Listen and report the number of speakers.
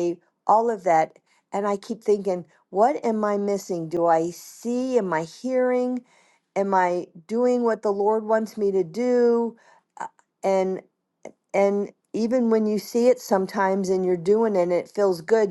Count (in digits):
1